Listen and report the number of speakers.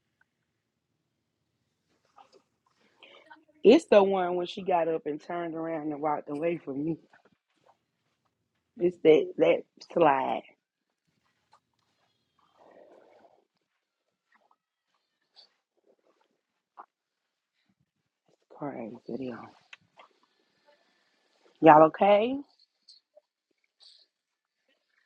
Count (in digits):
1